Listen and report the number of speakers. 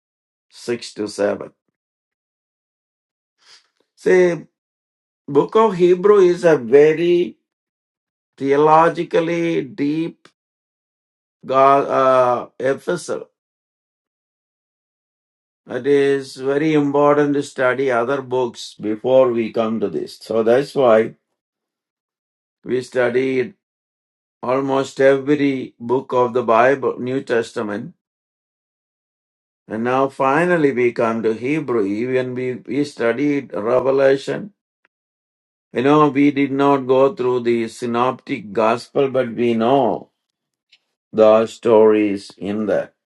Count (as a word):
one